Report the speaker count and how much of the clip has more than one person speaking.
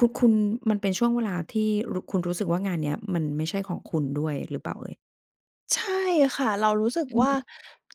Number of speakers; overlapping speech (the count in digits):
2, about 3%